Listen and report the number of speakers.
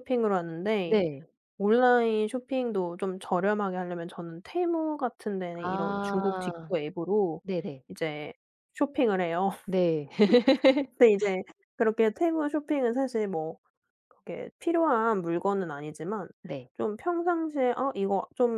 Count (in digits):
2